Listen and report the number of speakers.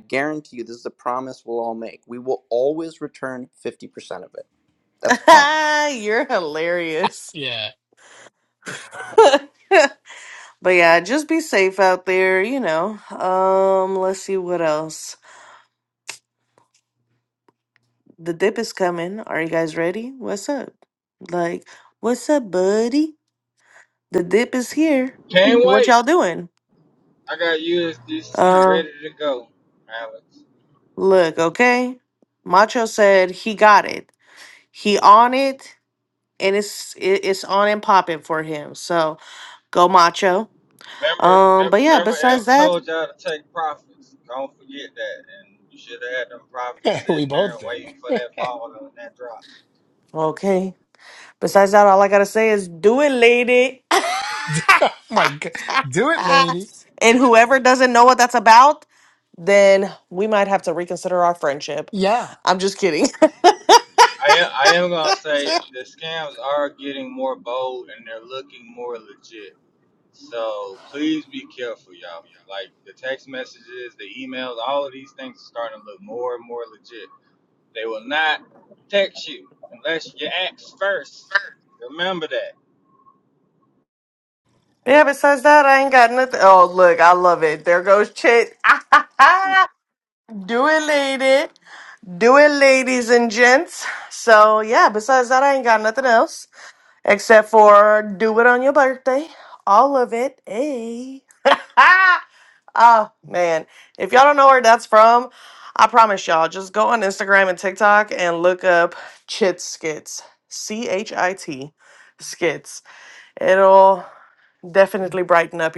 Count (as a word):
four